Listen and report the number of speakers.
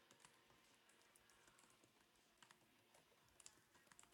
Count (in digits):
0